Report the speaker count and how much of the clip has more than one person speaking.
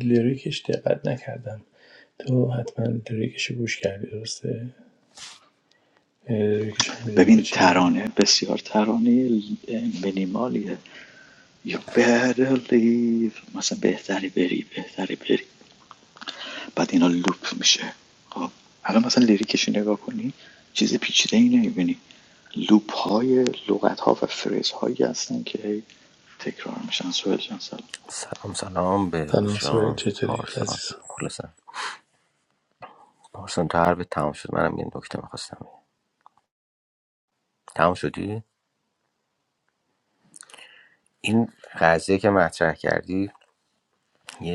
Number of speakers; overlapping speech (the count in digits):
3, about 5%